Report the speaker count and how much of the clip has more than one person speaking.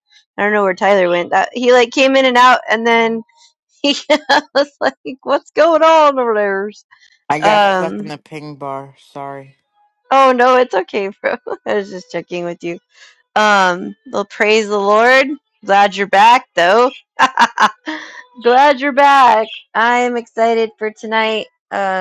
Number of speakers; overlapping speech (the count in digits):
2, about 3%